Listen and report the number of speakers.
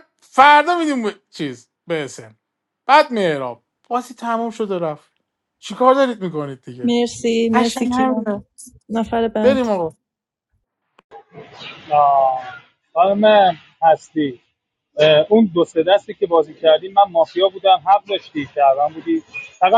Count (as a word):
three